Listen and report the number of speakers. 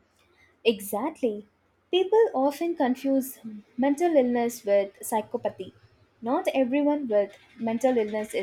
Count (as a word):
one